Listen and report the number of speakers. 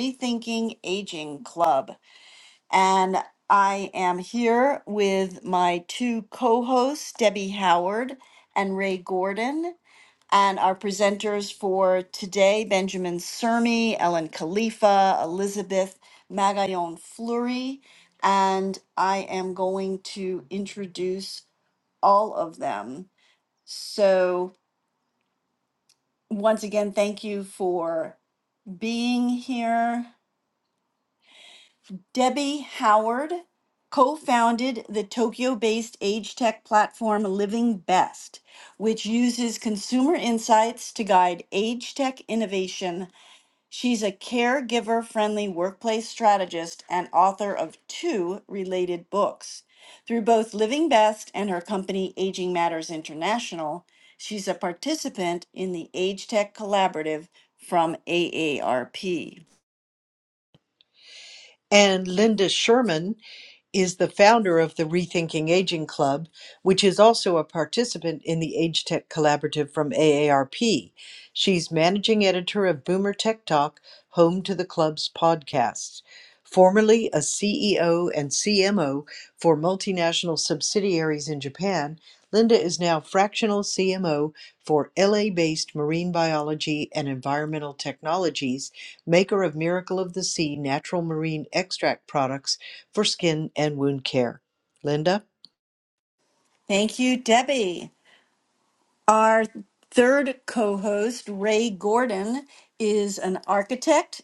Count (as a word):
two